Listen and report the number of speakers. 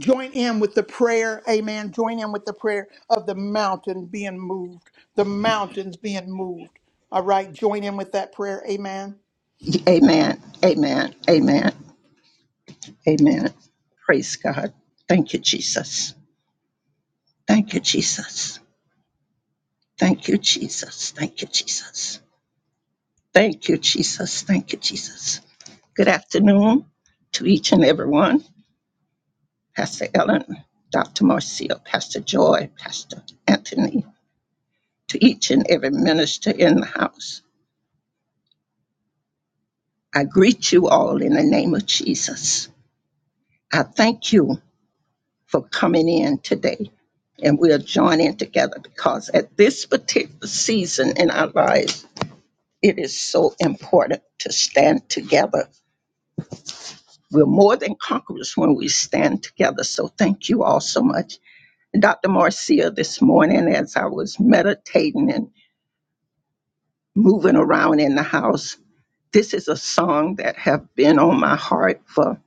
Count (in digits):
2